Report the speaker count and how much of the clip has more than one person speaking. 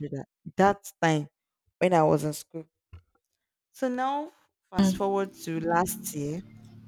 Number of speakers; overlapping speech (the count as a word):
one, no overlap